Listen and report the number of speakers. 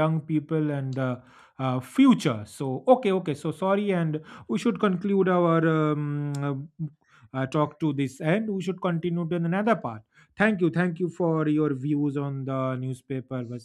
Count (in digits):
1